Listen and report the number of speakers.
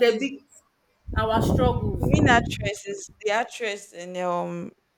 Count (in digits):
2